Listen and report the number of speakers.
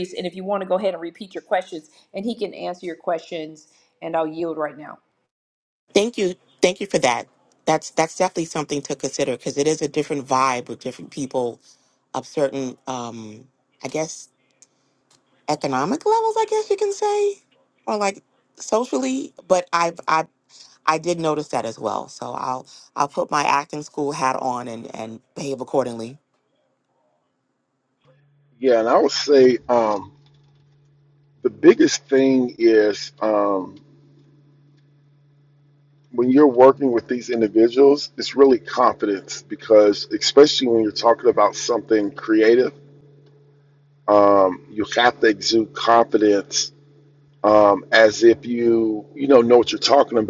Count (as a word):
three